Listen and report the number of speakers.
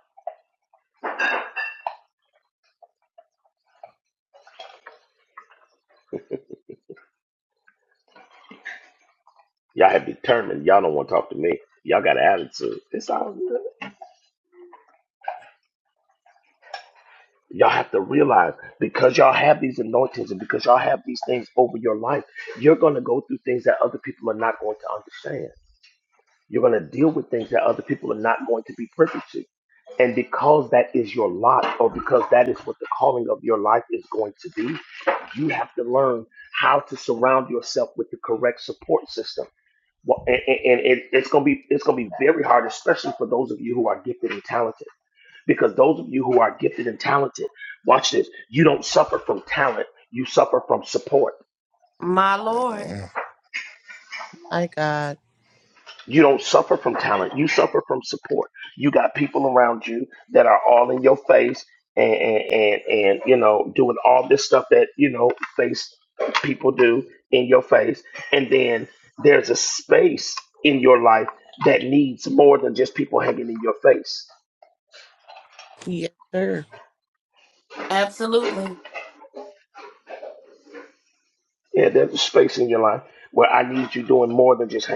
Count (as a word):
three